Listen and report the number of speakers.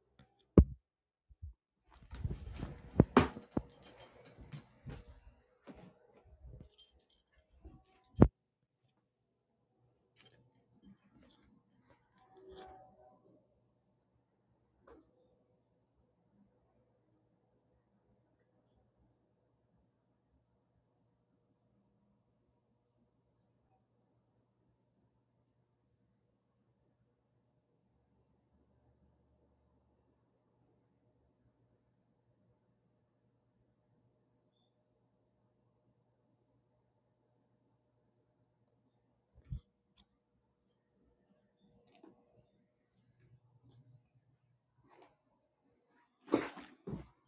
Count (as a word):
zero